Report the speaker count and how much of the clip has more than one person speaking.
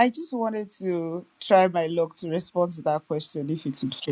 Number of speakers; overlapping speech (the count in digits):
1, no overlap